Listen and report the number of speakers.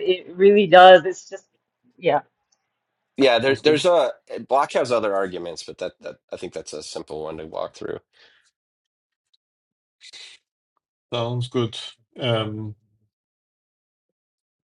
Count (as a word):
three